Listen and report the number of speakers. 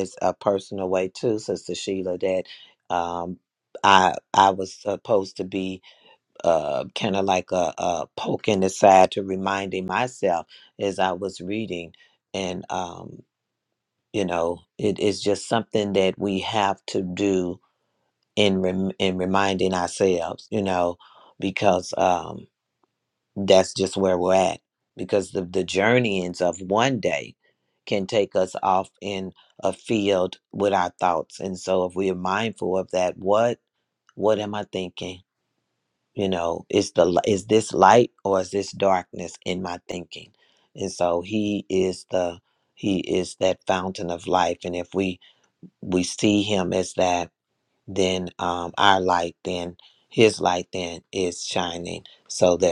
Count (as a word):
one